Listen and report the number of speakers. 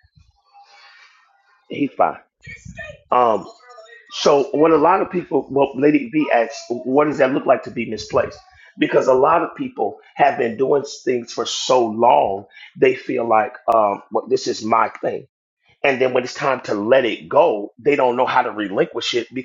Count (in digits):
1